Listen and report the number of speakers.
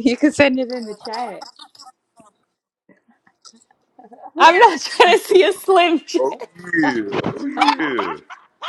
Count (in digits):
3